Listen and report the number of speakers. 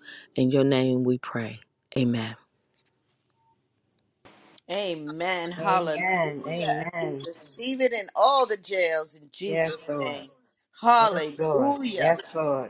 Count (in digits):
3